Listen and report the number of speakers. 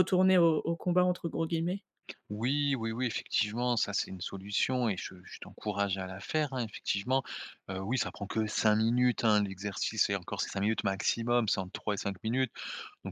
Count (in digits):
2